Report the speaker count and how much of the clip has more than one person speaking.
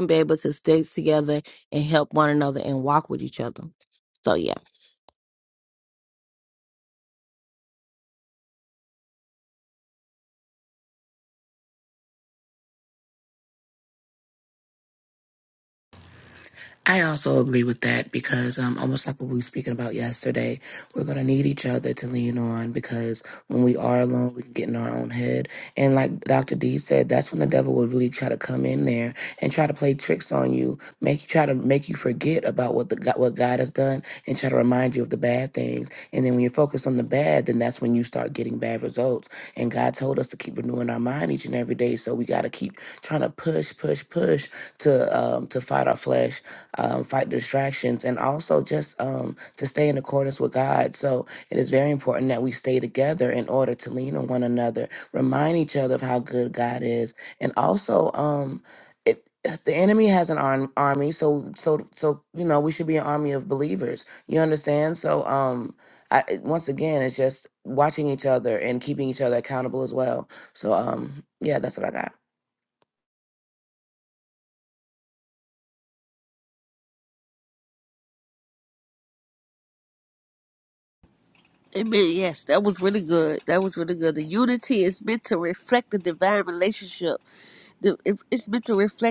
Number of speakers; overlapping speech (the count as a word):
three, no overlap